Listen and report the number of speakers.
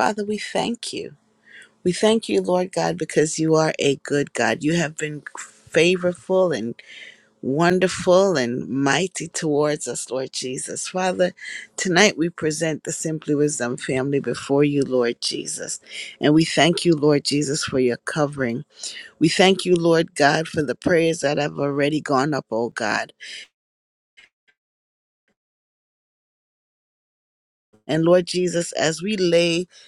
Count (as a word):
one